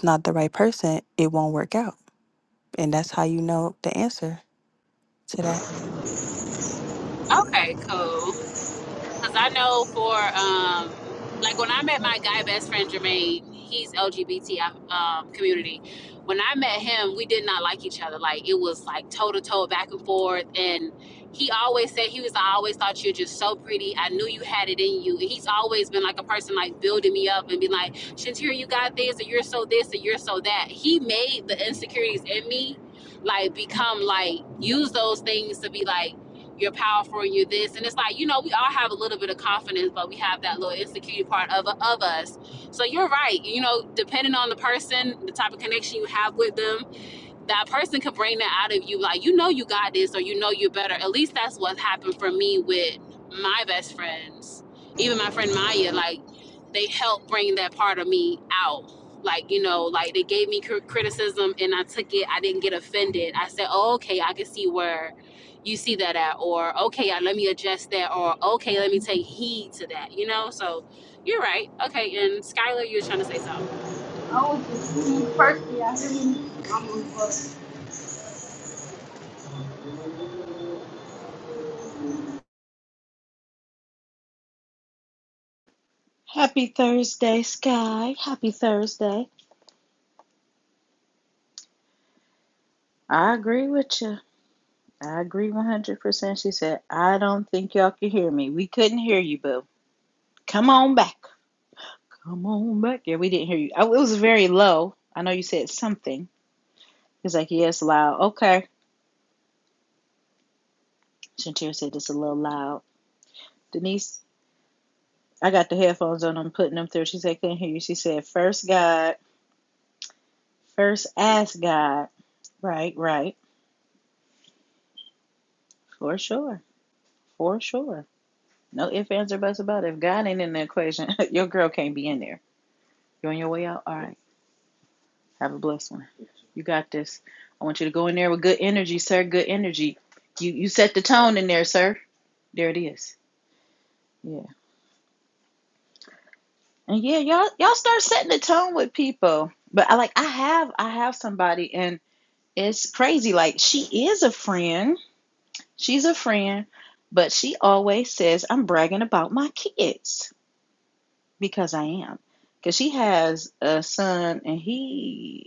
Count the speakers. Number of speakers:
four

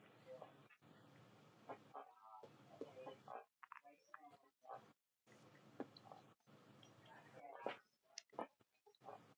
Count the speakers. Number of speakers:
zero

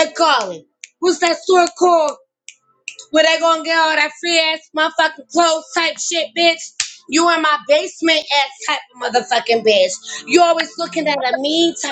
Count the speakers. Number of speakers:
one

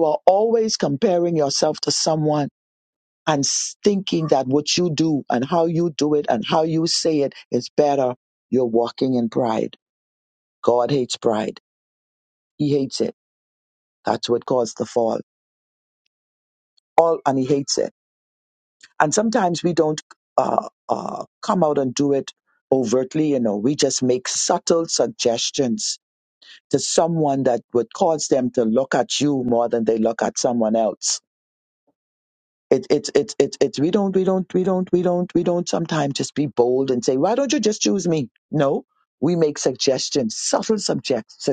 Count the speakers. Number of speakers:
one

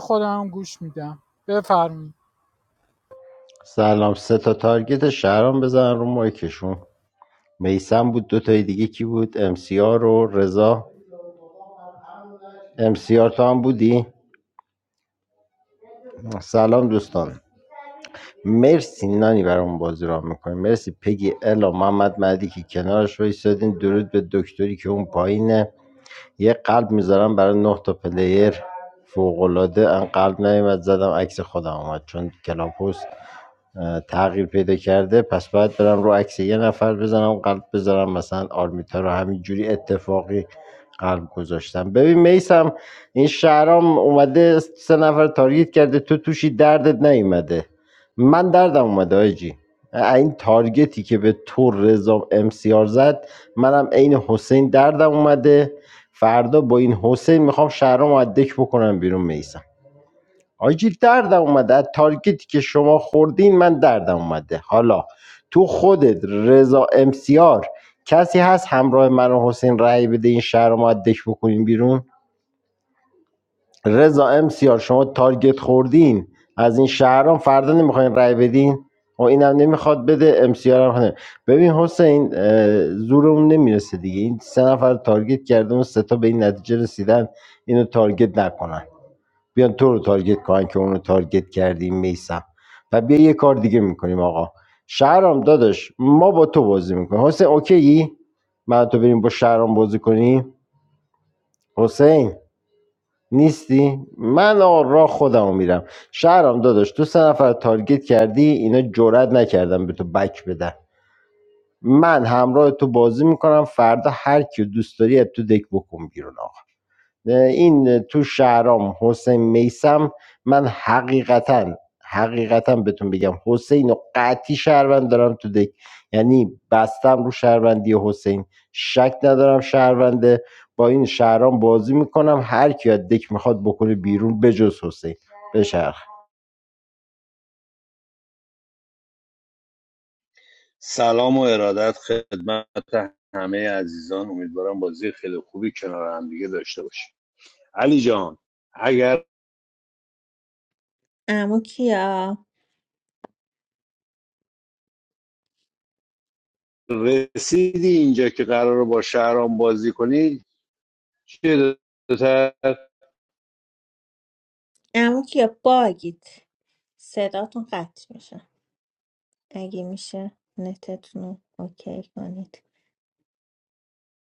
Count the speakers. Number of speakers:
four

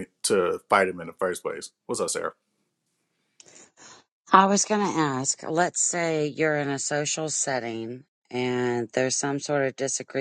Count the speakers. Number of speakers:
two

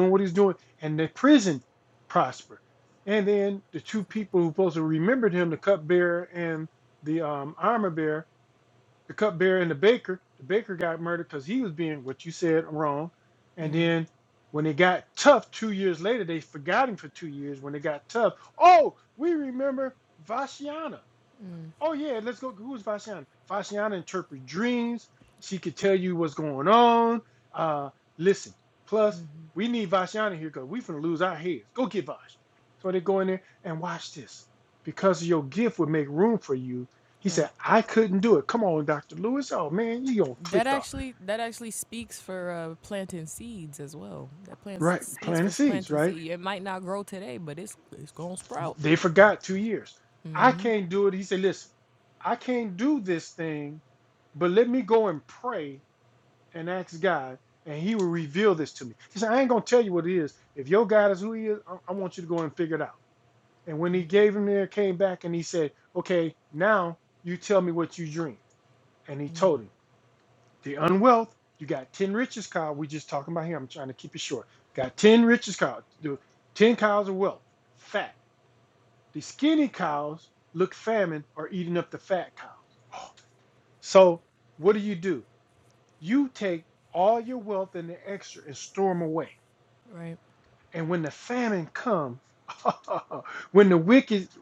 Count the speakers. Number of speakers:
two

